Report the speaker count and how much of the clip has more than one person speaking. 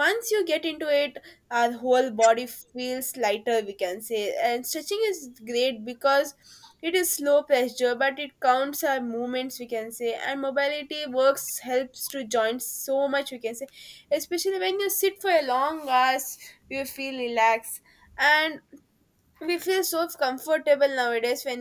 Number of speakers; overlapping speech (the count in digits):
1, no overlap